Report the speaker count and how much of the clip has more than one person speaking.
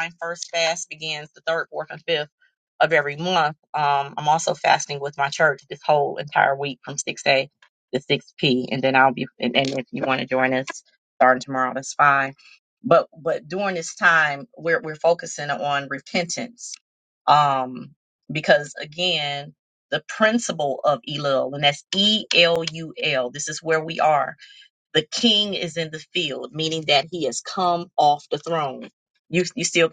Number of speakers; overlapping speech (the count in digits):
1, no overlap